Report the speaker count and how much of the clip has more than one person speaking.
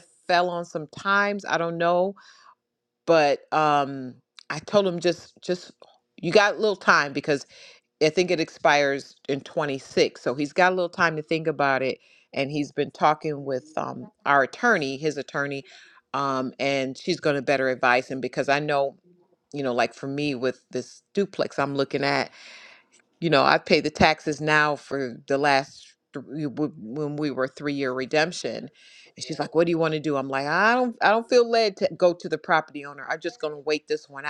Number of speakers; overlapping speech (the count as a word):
one, no overlap